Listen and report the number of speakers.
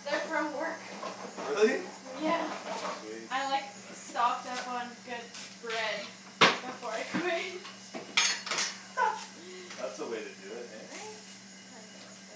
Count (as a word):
two